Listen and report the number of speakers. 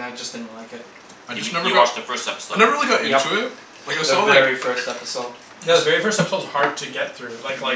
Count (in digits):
4